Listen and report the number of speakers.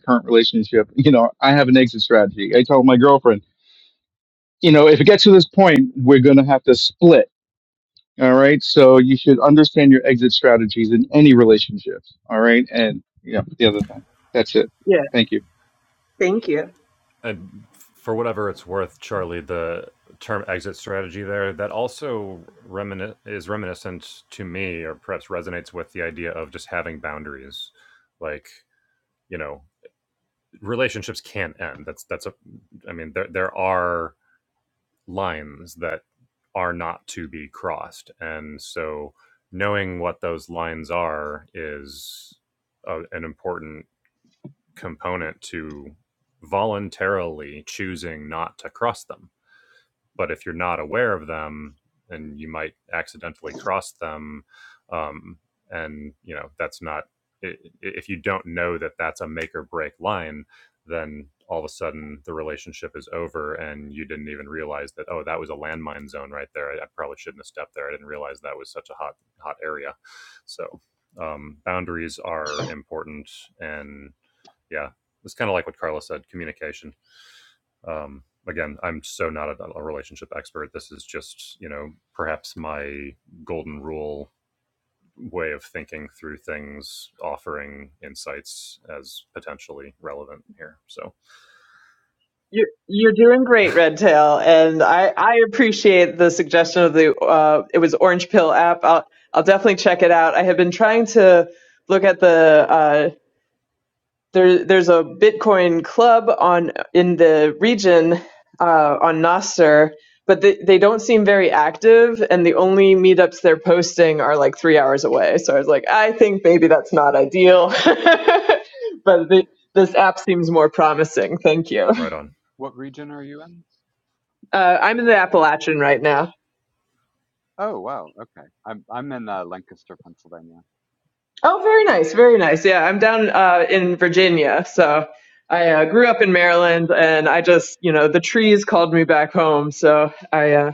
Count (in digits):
4